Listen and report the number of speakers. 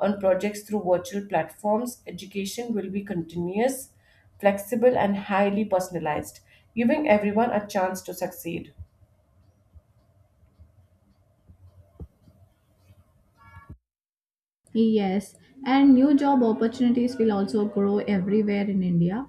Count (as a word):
two